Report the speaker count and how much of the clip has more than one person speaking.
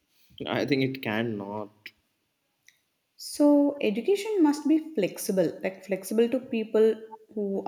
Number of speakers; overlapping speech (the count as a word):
two, no overlap